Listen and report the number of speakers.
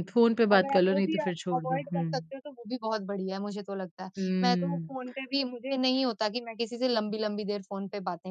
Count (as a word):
two